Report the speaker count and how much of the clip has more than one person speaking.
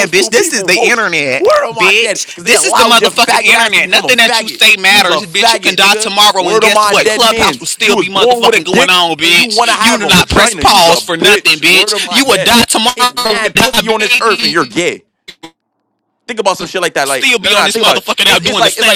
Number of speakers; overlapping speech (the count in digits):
2, about 82%